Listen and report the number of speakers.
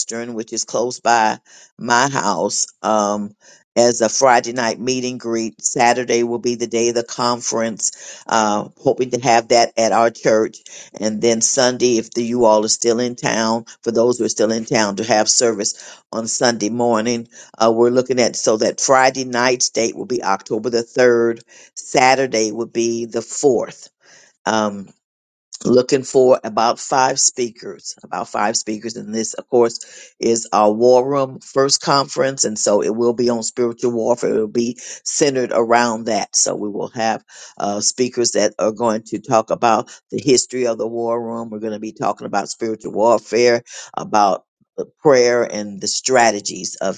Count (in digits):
1